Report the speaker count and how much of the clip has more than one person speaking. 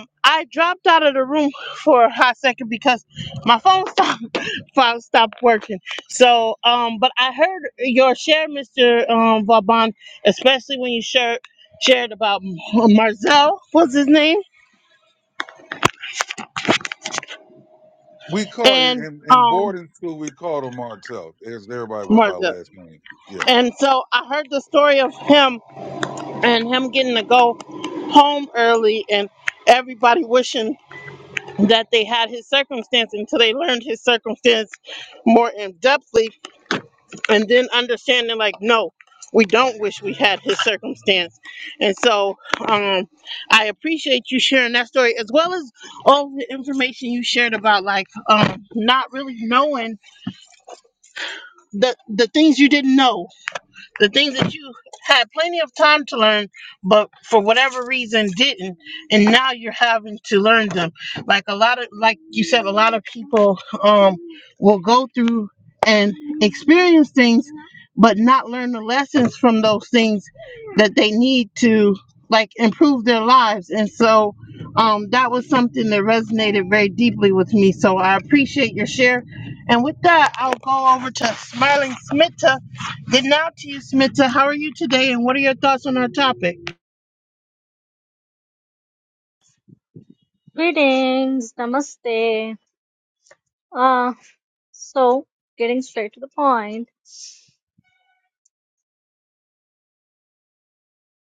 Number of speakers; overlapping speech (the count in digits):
3, about 2%